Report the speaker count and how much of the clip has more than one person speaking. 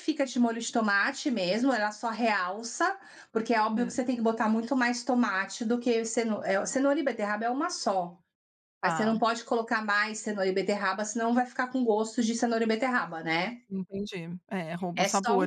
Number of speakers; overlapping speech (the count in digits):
2, about 8%